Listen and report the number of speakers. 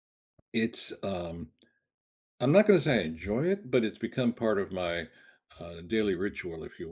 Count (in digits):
1